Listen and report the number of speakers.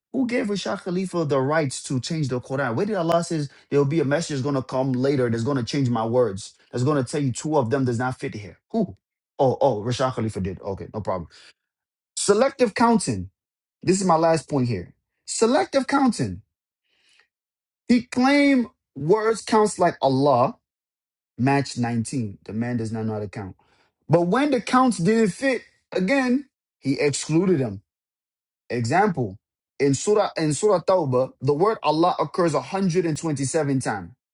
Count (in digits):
1